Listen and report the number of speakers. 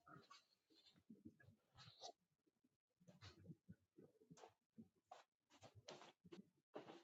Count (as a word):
zero